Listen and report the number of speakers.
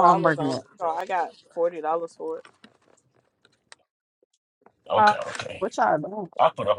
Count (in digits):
3